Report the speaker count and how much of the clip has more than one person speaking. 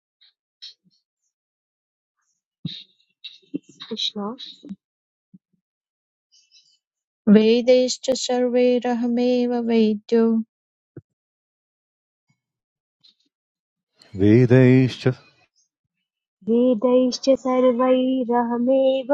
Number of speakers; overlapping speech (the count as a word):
three, no overlap